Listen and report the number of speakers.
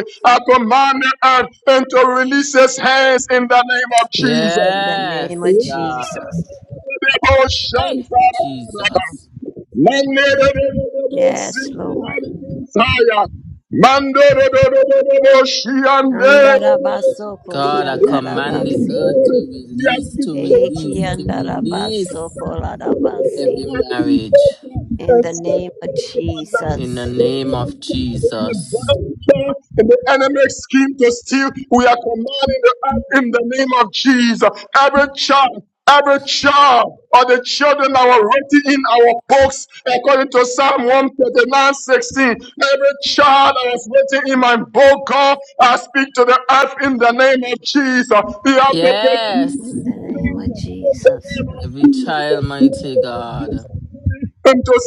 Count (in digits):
3